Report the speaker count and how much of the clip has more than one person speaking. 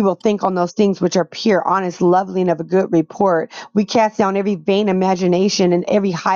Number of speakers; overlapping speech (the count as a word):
one, no overlap